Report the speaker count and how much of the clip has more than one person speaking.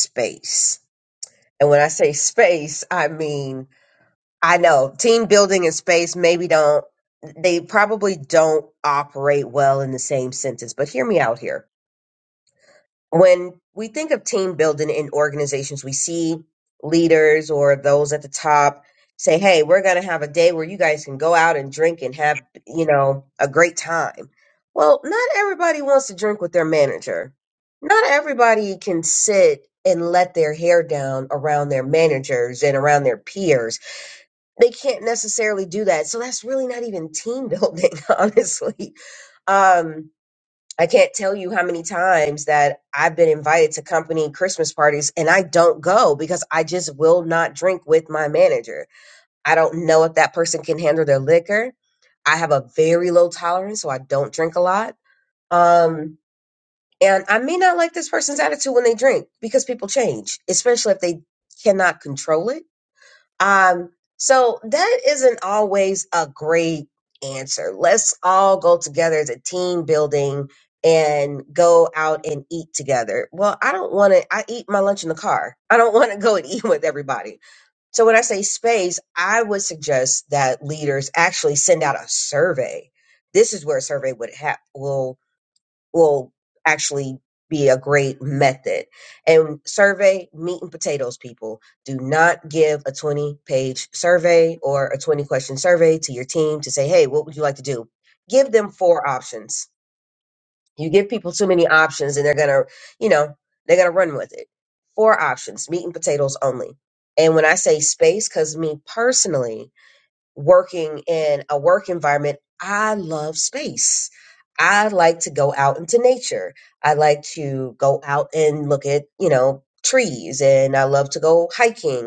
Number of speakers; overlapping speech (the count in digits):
1, no overlap